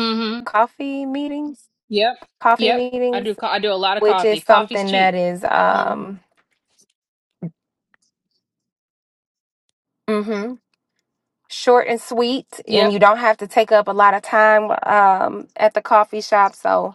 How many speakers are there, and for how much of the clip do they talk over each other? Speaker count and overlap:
2, about 14%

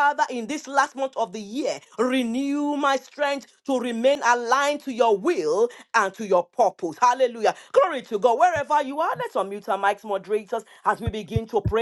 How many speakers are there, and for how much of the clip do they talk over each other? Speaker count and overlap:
1, no overlap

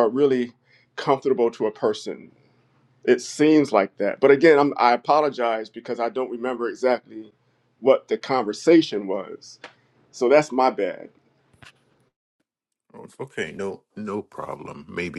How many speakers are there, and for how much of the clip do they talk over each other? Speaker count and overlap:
2, no overlap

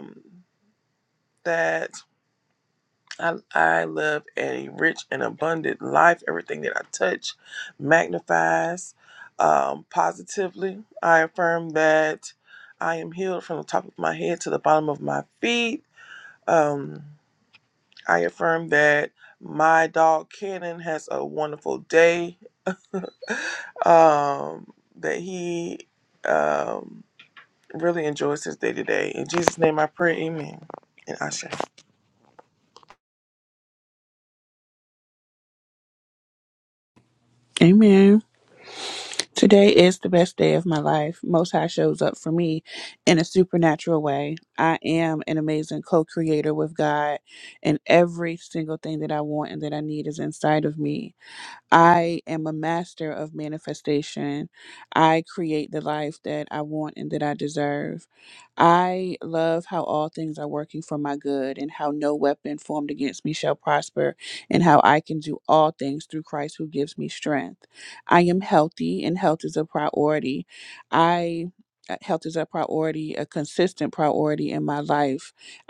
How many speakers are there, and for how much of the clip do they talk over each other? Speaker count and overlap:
2, no overlap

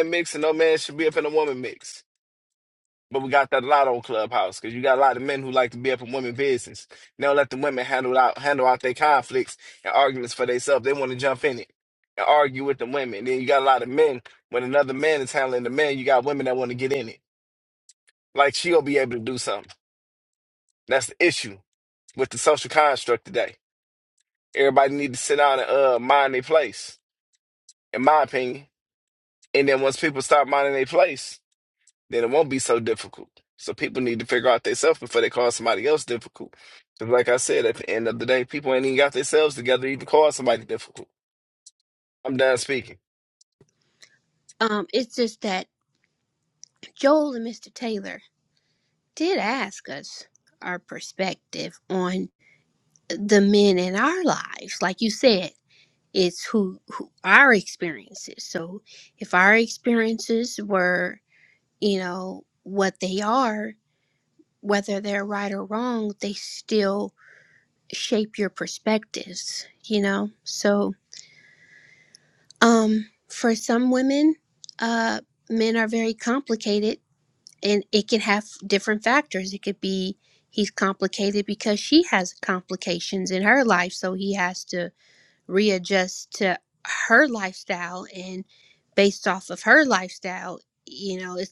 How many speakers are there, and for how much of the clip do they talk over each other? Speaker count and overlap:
2, no overlap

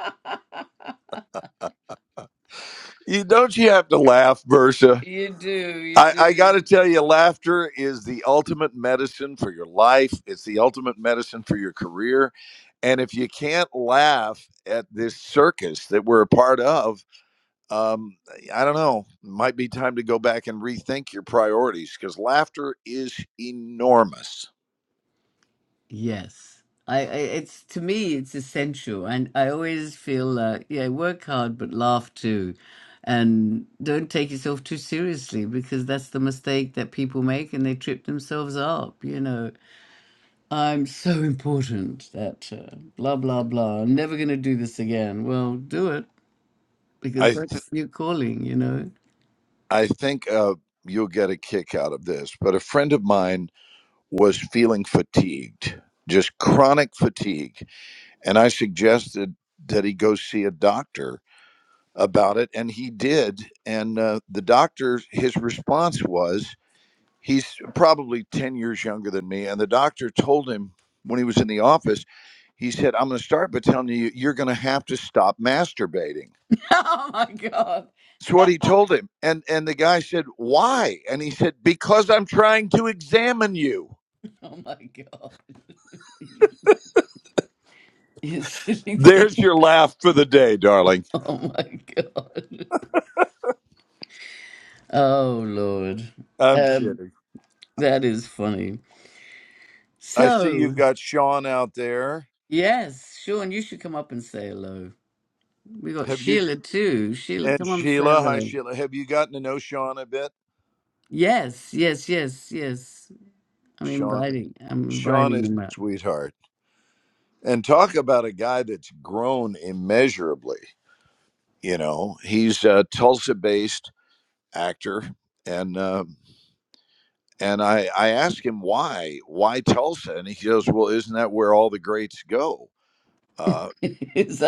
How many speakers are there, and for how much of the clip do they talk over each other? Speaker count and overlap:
2, about 4%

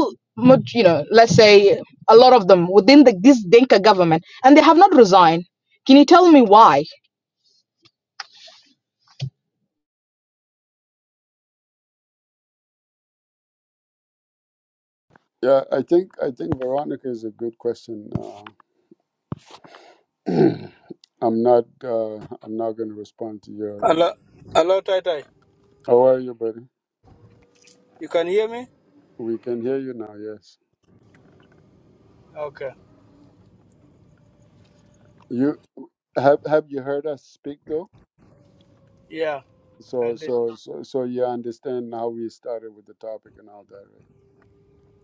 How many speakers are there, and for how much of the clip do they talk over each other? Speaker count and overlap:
3, about 1%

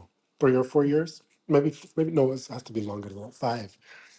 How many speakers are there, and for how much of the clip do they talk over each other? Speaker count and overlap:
1, no overlap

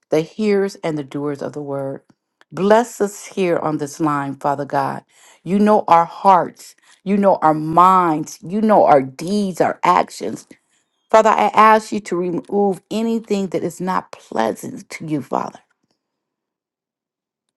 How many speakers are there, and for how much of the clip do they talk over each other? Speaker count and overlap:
1, no overlap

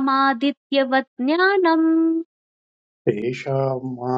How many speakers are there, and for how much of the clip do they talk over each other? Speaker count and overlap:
2, no overlap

